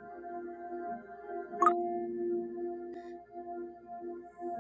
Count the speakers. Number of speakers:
zero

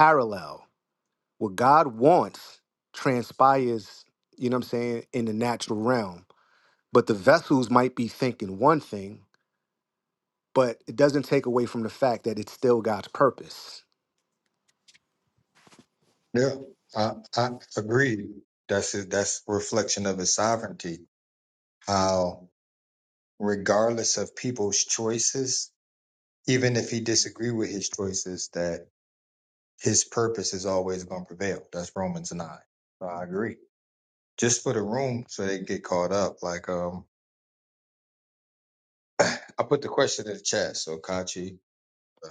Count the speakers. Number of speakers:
two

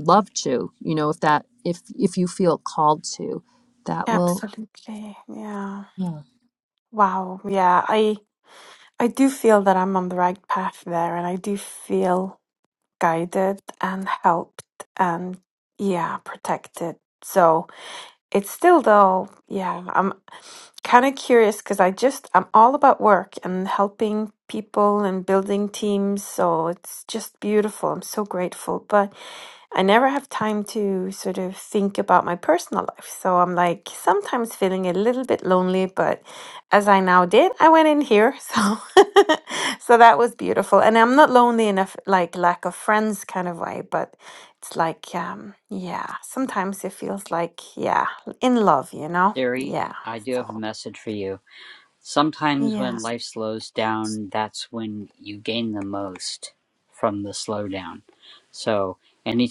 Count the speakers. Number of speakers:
three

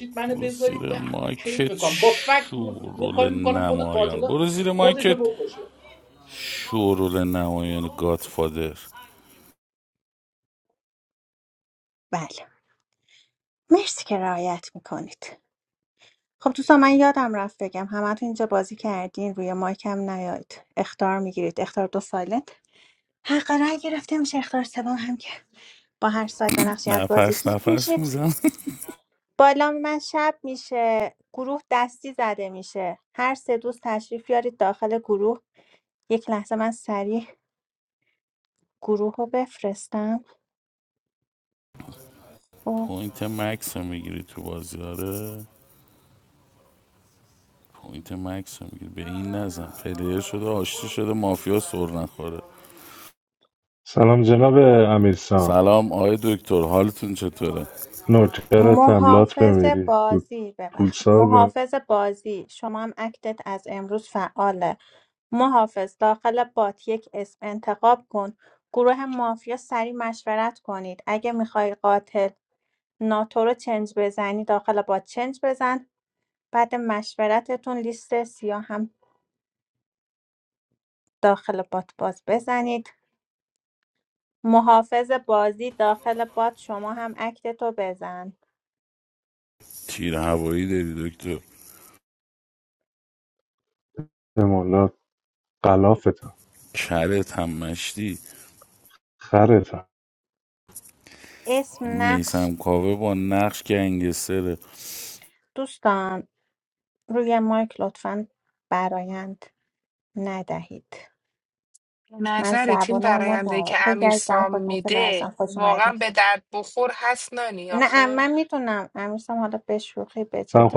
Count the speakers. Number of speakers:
five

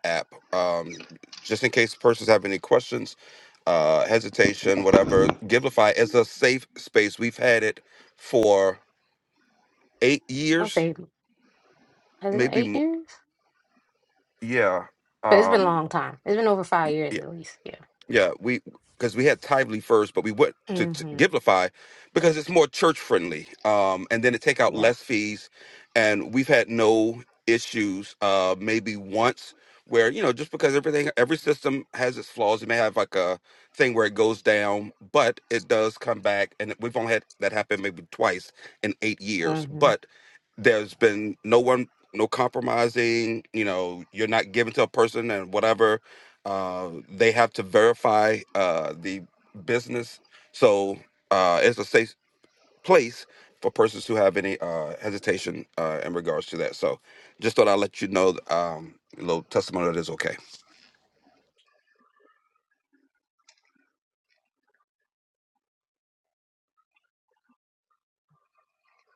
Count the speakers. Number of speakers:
two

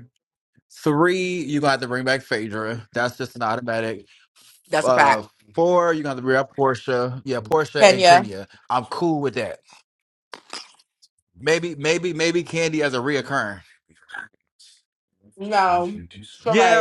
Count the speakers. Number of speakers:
two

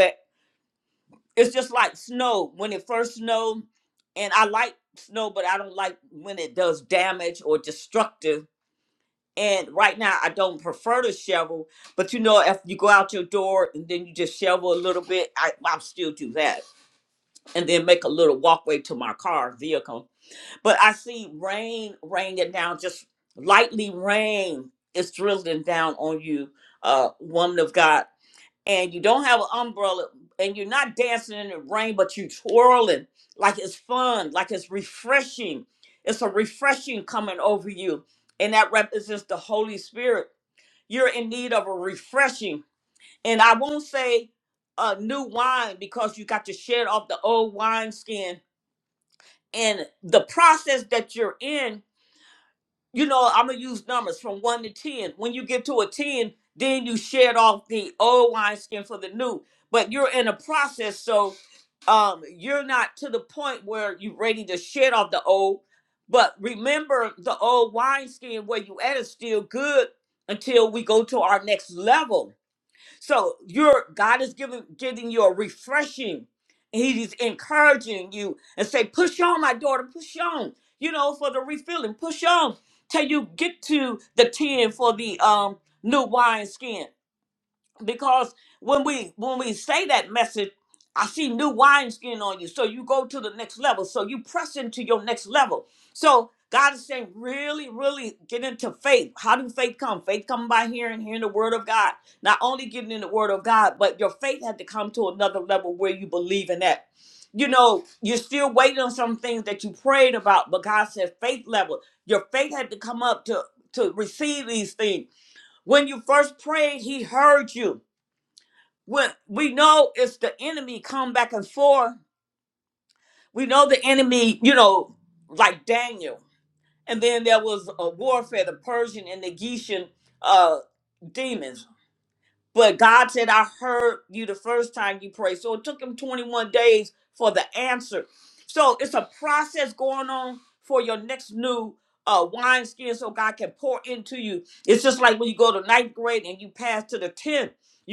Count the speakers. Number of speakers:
one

